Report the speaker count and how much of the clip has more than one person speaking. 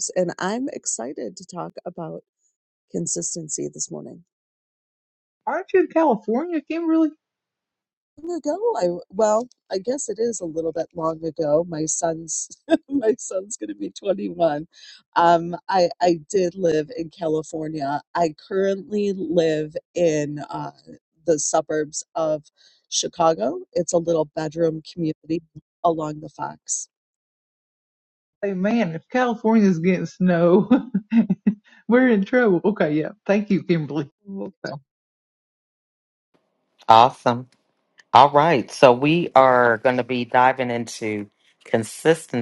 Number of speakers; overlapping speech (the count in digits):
3, no overlap